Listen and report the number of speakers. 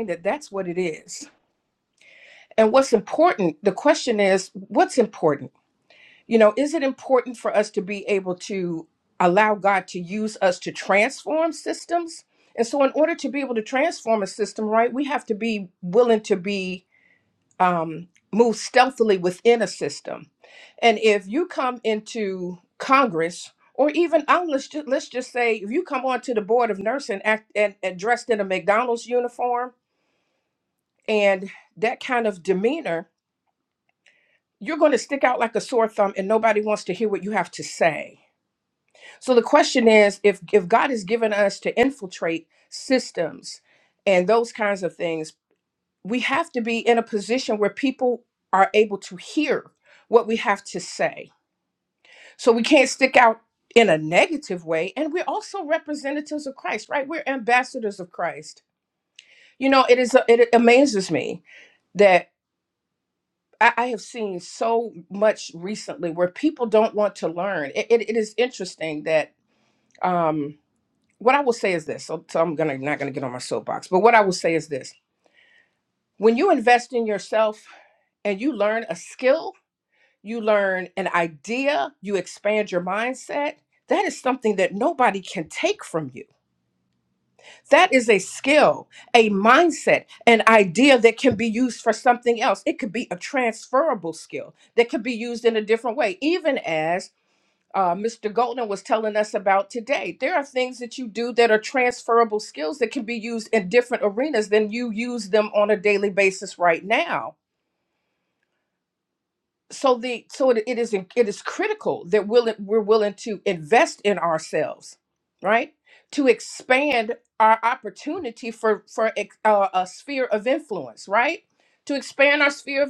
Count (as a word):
one